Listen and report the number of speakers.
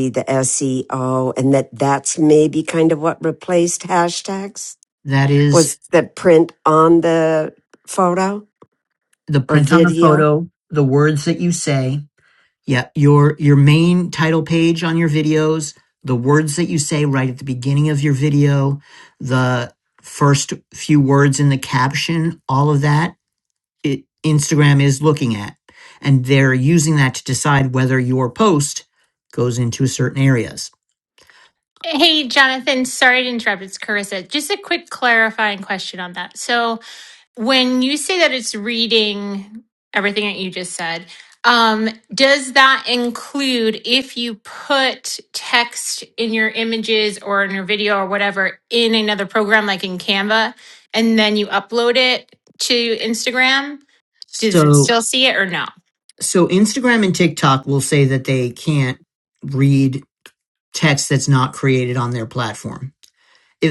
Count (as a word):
three